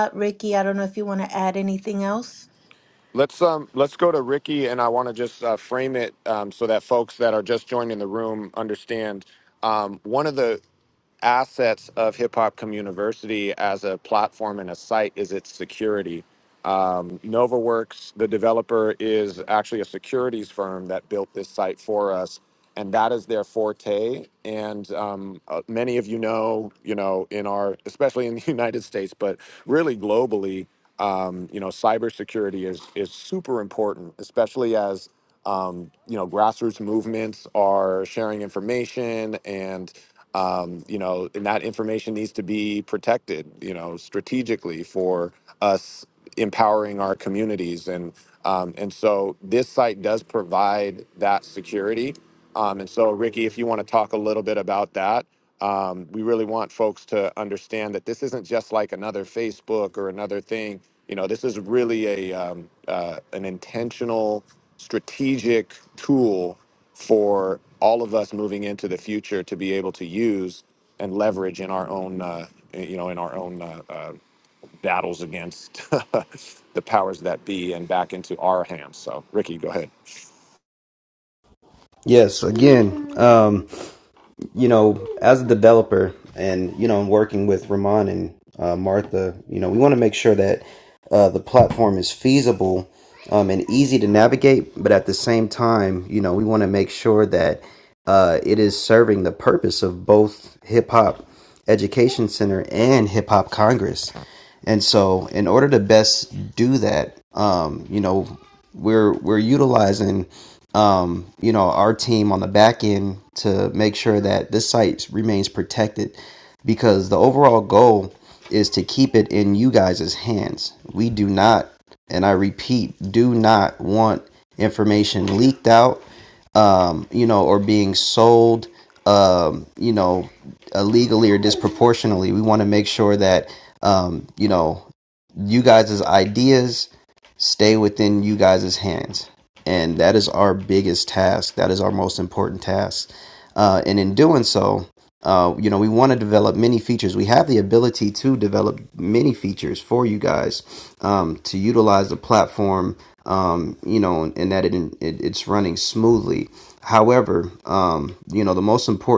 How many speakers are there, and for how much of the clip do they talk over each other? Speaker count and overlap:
three, no overlap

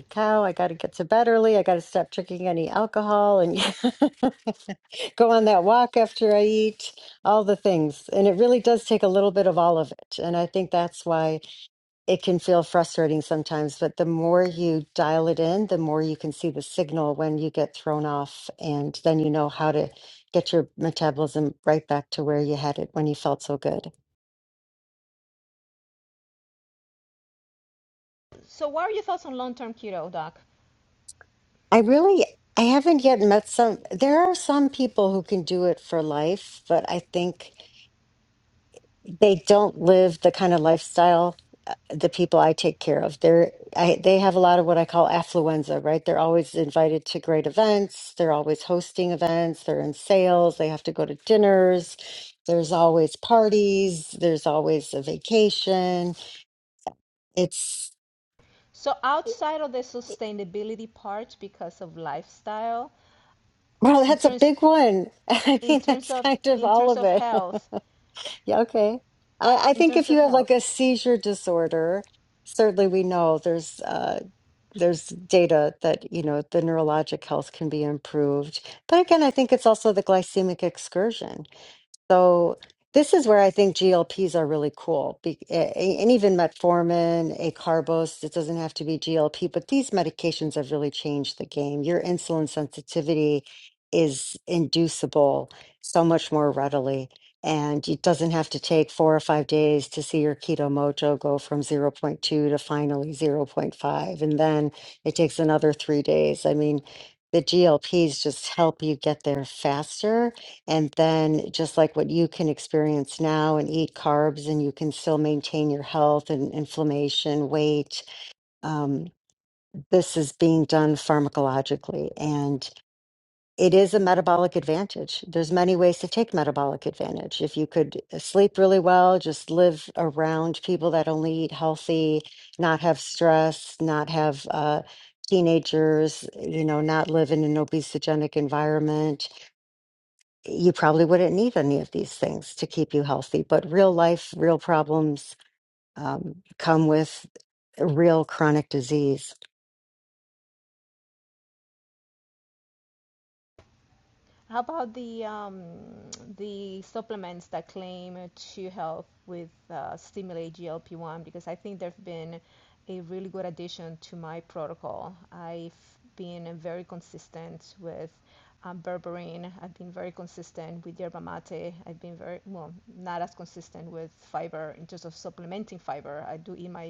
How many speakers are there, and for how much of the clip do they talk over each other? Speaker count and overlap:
two, about 2%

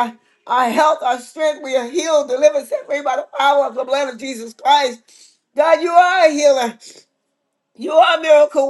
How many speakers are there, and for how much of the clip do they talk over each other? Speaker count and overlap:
one, no overlap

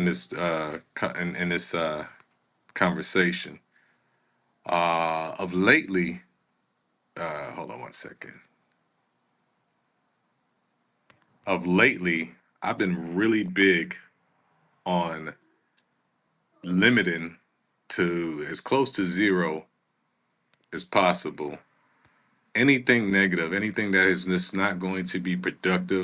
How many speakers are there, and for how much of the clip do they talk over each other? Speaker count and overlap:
one, no overlap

